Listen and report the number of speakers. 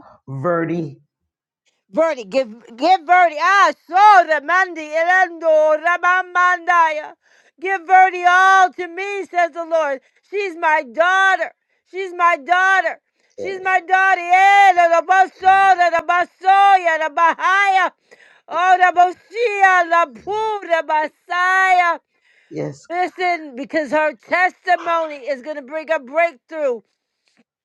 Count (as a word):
two